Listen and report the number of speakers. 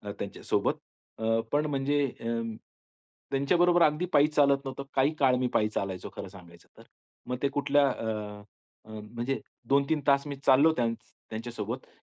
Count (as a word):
one